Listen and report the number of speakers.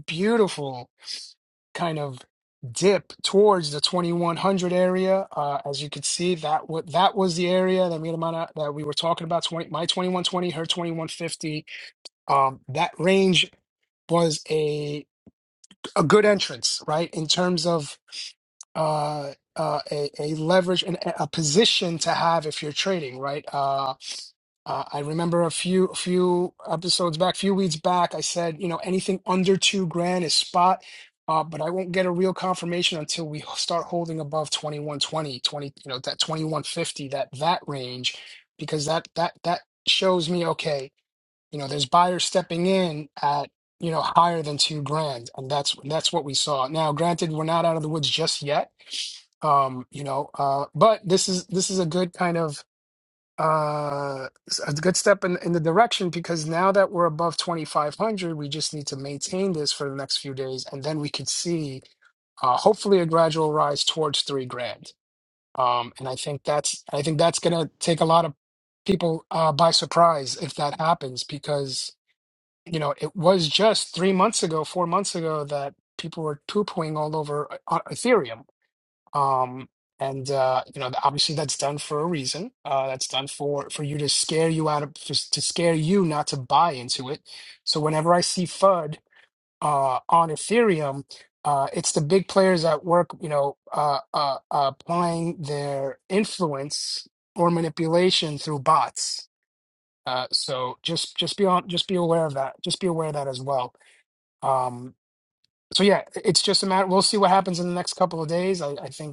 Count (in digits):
1